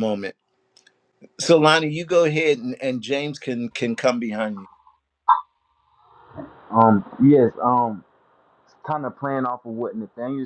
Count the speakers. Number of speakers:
2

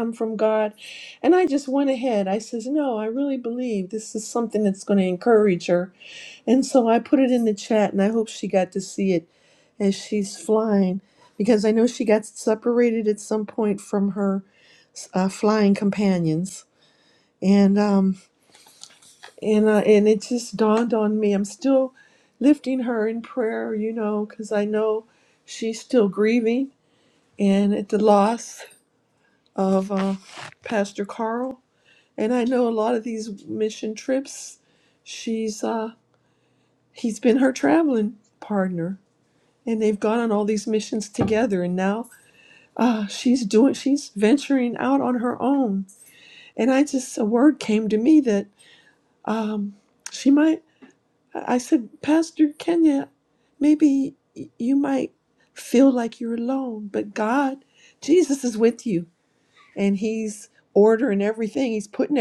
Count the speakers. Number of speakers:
1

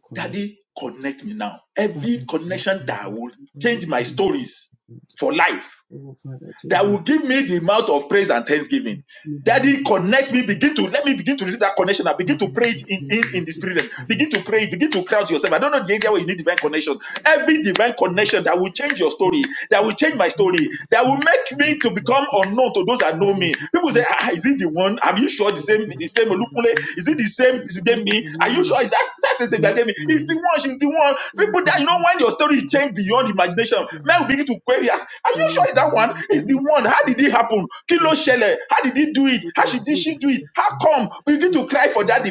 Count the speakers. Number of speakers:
2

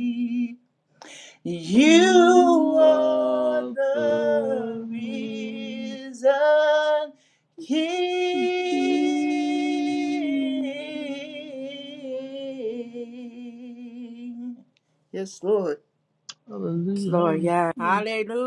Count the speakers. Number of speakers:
3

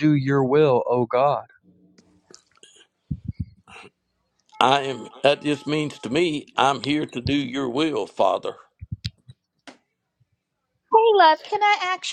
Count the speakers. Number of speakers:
3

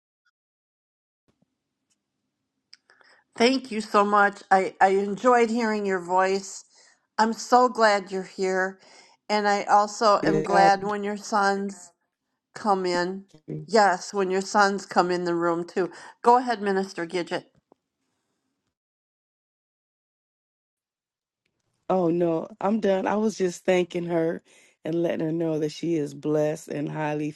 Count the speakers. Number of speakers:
2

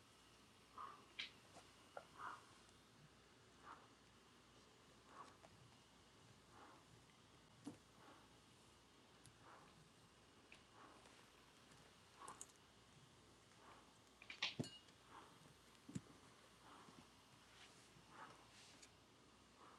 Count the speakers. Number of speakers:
0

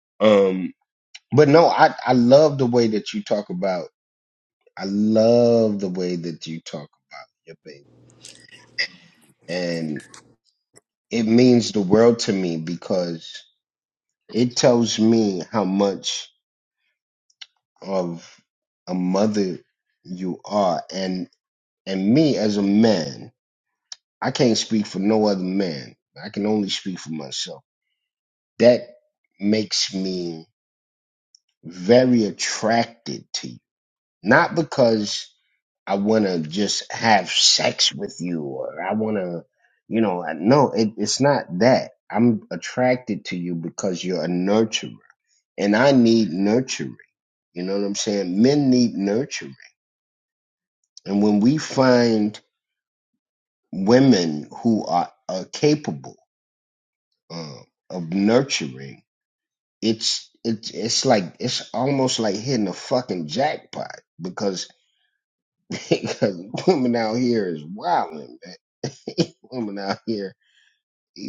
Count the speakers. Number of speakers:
1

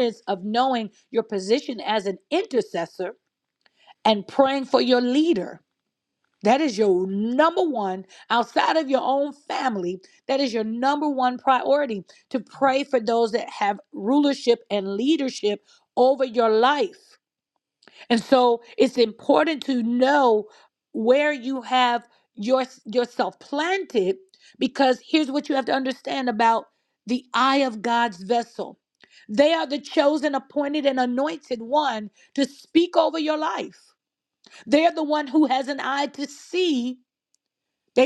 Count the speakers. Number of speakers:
1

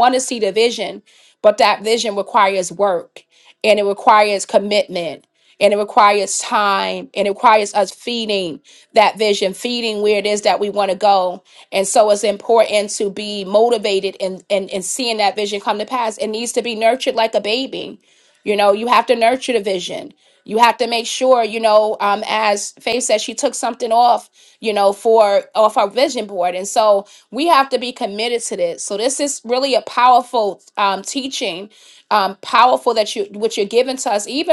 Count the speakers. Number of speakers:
1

